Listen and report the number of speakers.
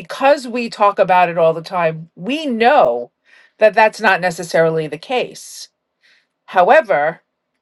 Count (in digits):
1